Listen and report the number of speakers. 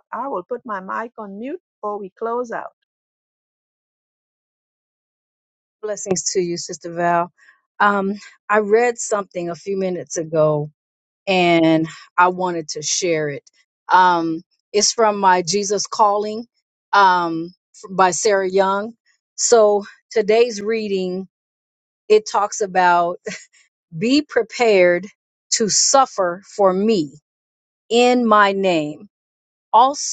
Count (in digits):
2